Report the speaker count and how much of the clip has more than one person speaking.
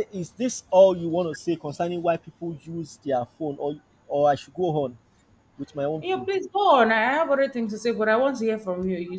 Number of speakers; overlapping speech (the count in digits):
2, about 3%